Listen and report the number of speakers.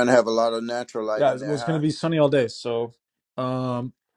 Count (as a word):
two